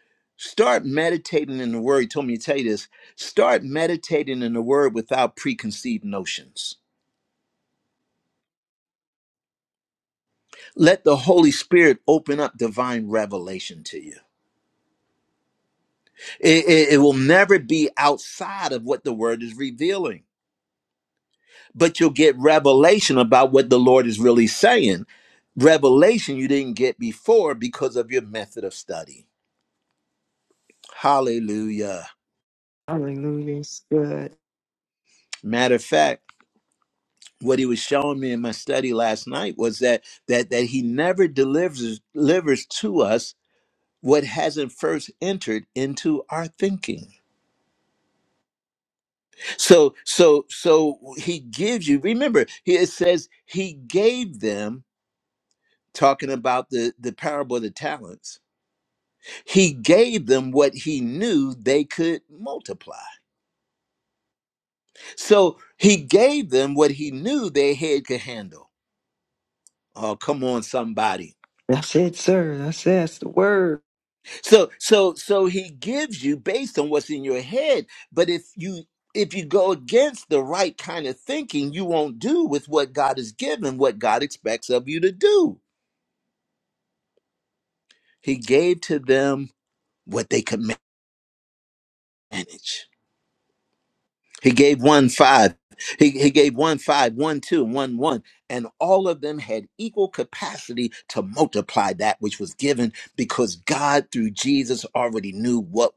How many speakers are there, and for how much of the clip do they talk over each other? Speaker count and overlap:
2, no overlap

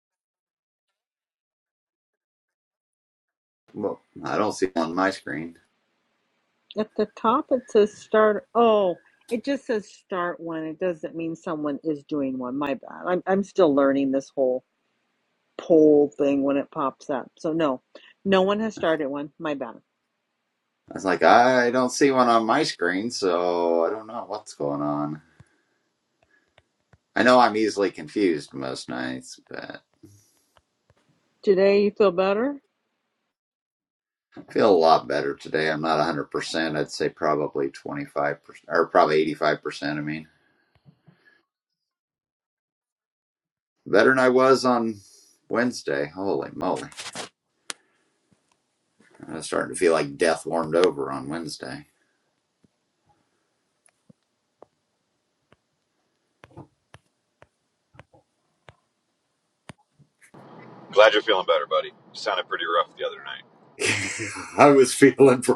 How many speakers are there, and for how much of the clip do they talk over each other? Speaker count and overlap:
3, no overlap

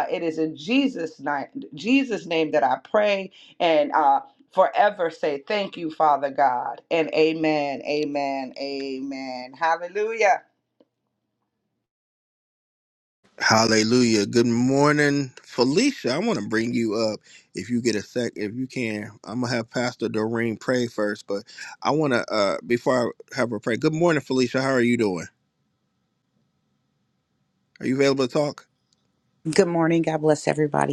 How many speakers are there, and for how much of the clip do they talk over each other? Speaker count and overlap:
3, no overlap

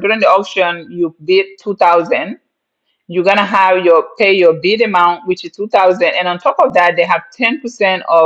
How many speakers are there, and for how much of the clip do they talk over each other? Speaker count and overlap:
1, no overlap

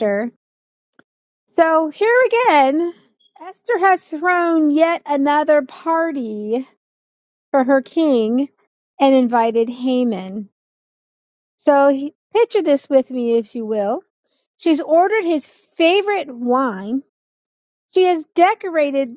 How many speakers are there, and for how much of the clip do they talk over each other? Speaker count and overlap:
1, no overlap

